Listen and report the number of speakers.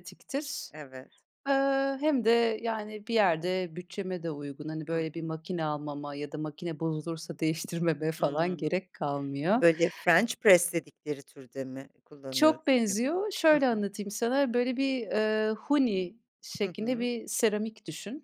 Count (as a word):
two